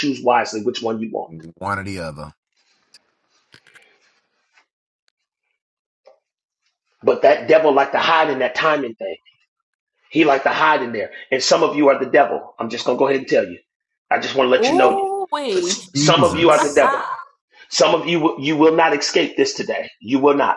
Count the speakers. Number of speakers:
3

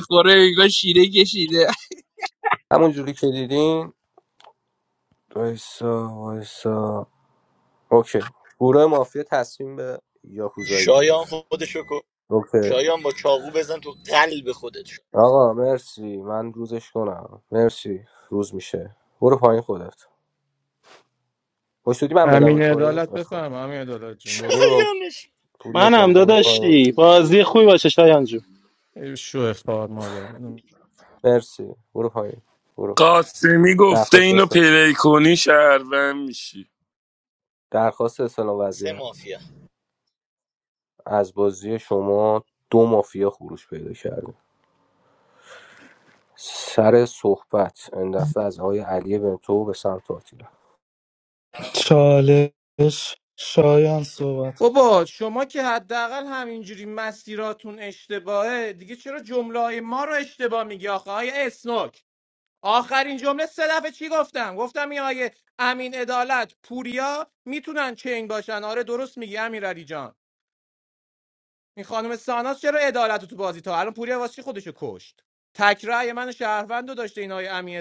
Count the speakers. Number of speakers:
7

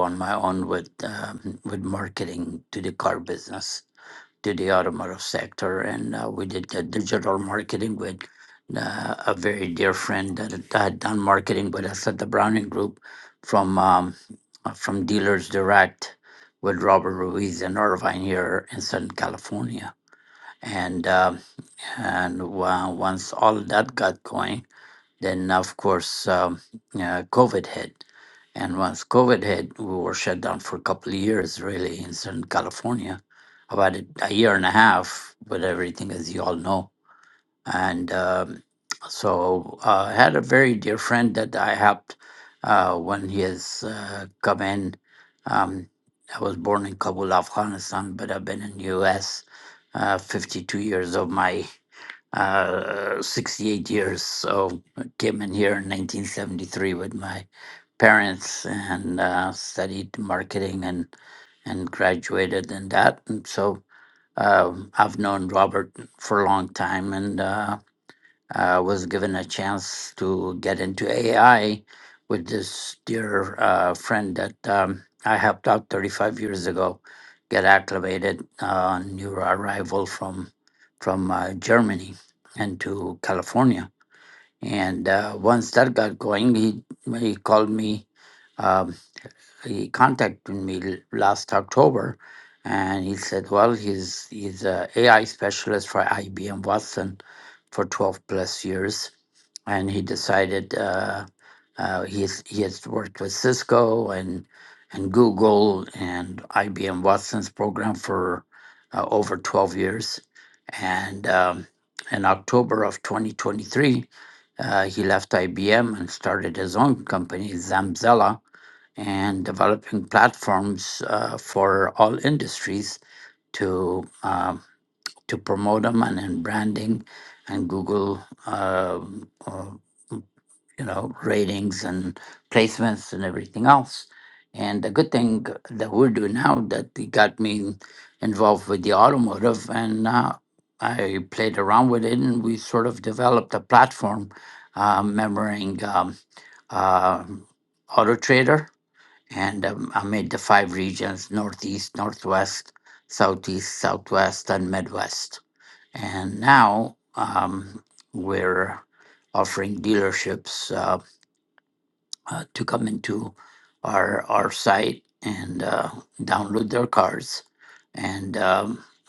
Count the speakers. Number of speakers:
1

